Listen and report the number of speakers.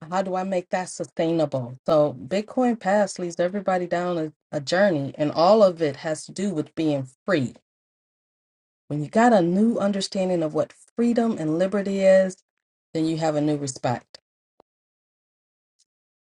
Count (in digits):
1